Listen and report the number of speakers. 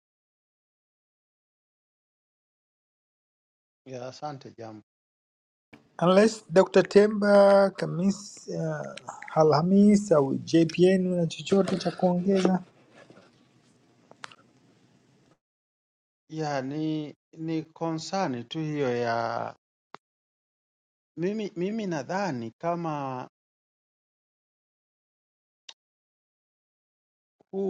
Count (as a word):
two